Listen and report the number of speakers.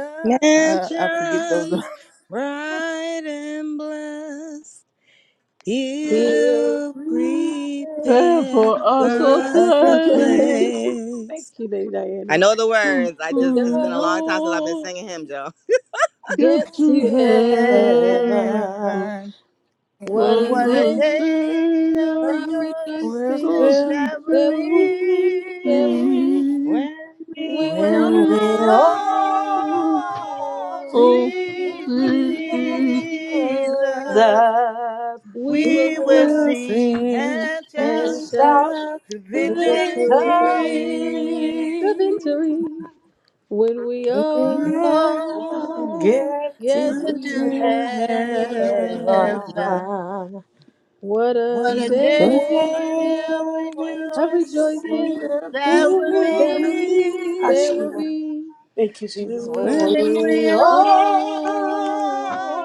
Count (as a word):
five